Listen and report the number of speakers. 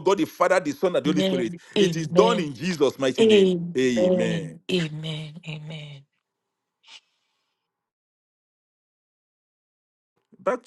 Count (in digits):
2